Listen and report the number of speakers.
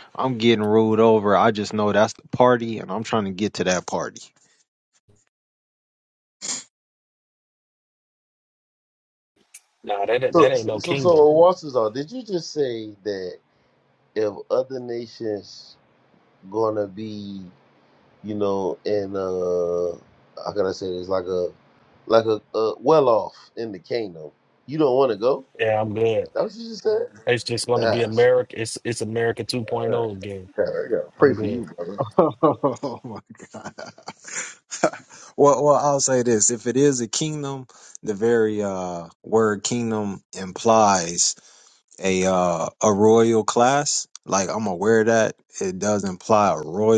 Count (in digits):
3